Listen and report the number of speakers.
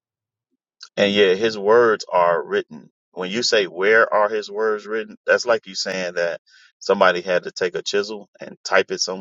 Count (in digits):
1